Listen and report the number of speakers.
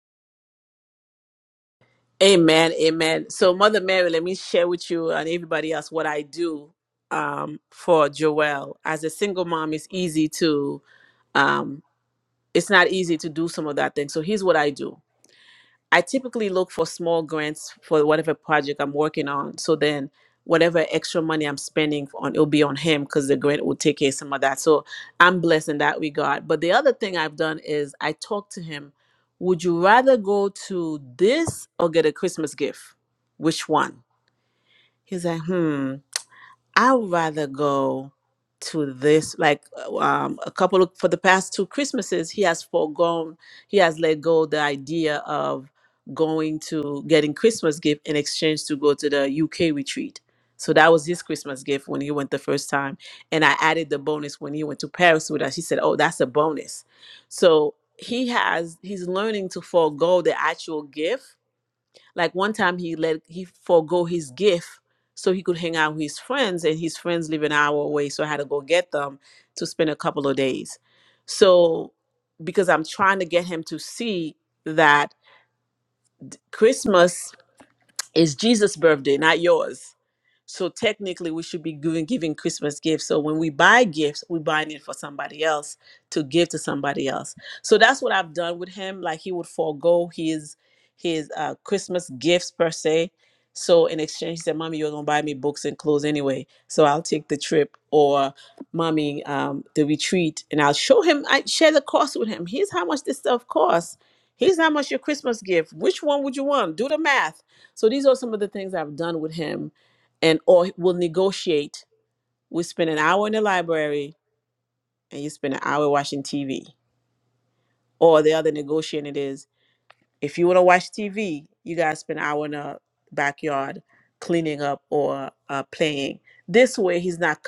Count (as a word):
one